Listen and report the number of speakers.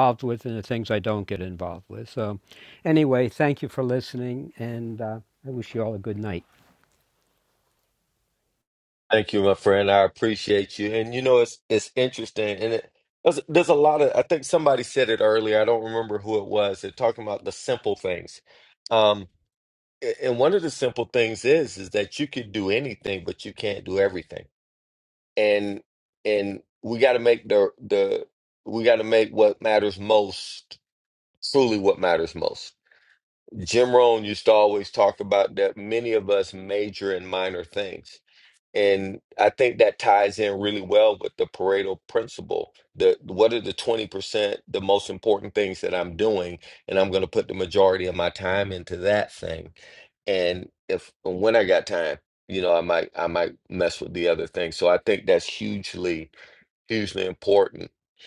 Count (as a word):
two